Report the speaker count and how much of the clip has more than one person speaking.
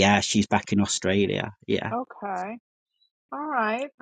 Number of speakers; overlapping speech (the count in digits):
2, no overlap